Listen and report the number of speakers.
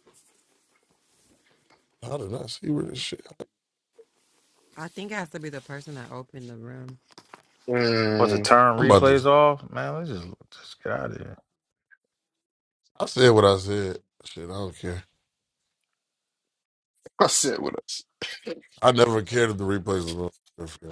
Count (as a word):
four